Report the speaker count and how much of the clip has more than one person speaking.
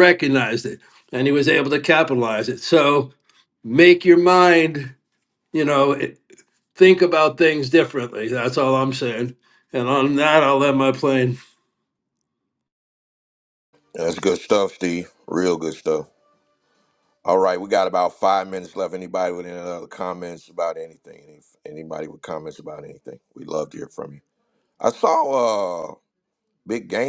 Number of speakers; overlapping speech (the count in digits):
2, no overlap